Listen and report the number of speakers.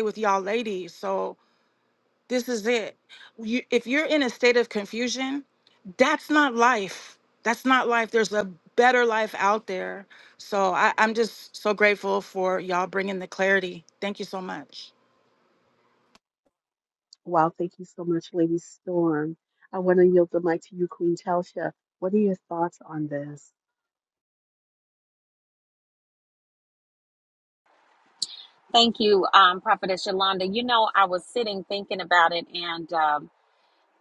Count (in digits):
3